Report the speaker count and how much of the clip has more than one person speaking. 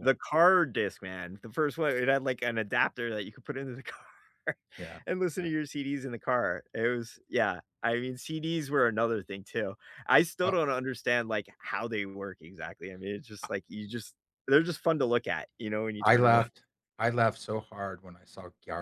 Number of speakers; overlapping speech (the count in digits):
2, about 5%